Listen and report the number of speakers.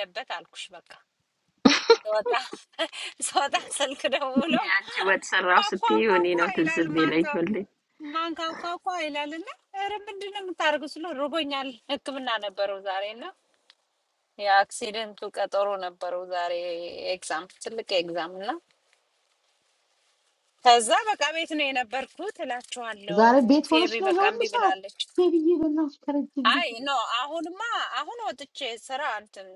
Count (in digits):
3